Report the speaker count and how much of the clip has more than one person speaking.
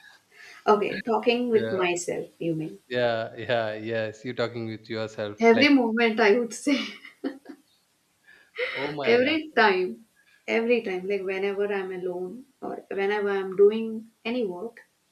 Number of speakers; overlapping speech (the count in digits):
2, about 6%